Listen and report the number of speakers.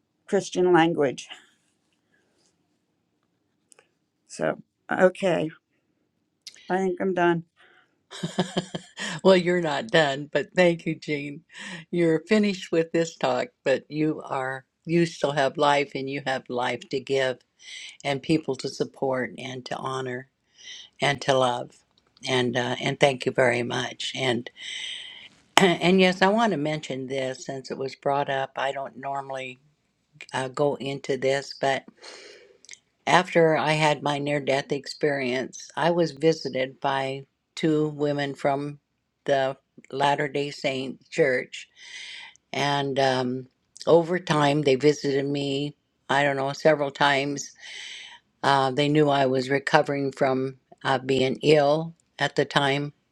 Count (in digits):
2